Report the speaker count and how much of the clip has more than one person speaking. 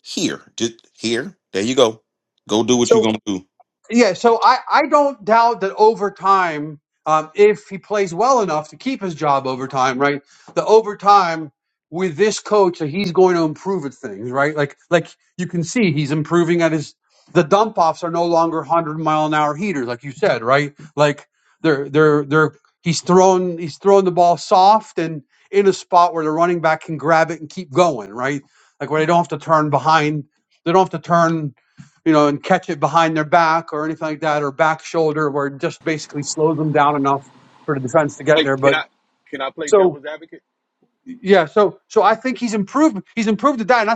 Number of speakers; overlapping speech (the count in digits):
3, about 2%